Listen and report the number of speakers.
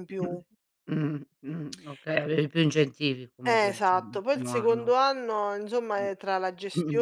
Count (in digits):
2